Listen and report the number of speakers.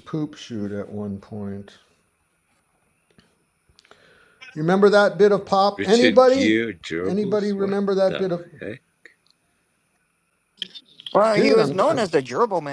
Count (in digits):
3